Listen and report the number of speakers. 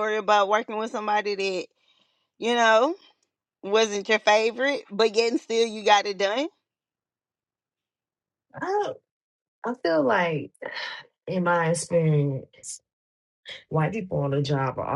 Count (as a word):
two